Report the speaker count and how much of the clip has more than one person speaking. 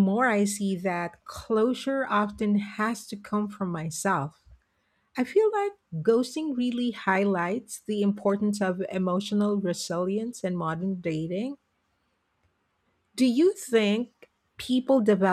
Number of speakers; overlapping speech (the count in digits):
1, no overlap